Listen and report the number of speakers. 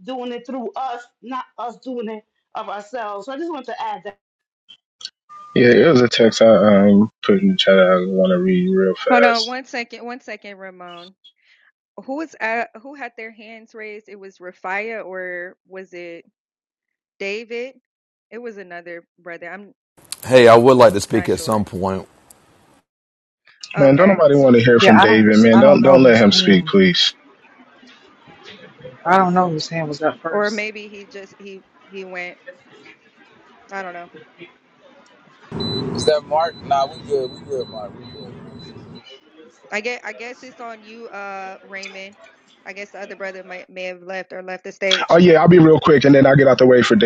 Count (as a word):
six